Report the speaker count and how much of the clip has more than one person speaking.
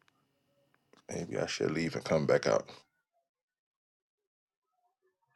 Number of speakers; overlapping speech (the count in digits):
1, no overlap